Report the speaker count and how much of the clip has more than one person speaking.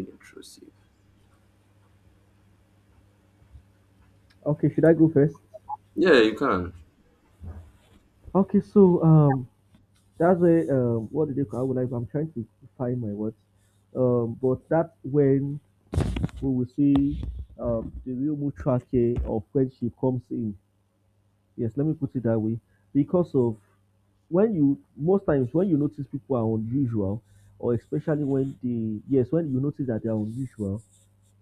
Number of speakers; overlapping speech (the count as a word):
two, no overlap